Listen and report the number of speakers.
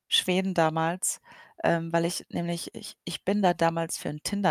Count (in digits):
1